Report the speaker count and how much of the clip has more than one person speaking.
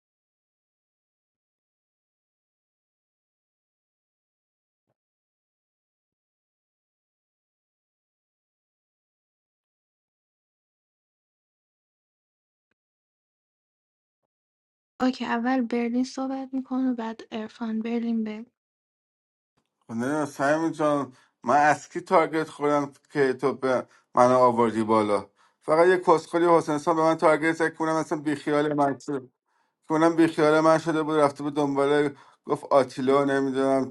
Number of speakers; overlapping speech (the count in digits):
2, no overlap